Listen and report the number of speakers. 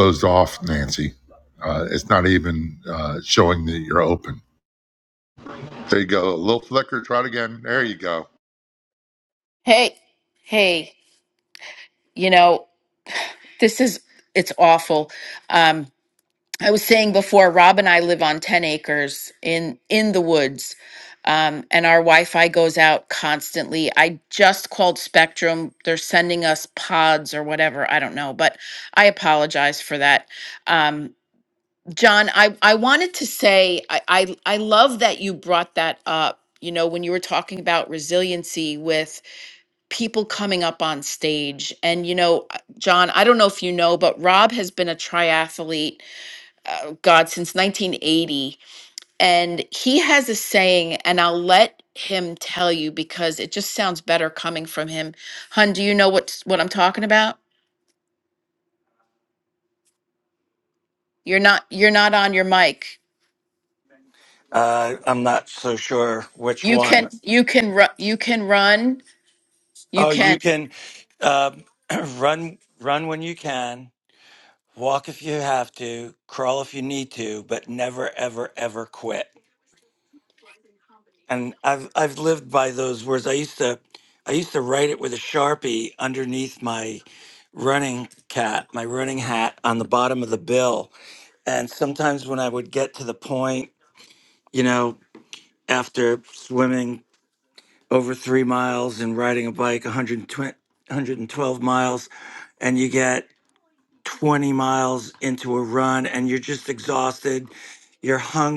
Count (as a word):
three